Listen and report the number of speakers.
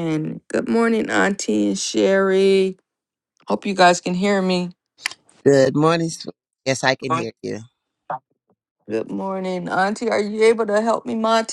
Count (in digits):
2